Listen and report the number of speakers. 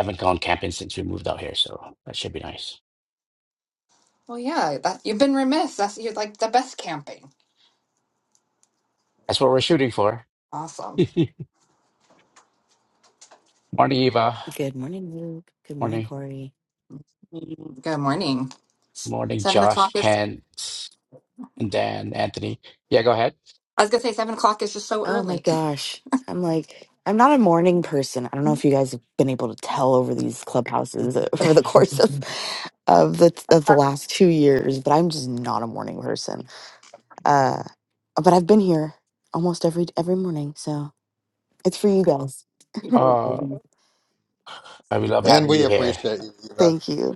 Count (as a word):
four